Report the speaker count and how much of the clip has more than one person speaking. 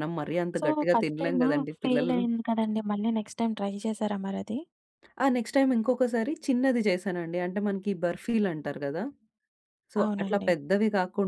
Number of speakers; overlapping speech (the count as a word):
two, about 19%